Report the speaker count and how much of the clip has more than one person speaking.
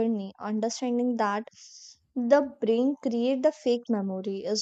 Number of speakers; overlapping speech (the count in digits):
1, no overlap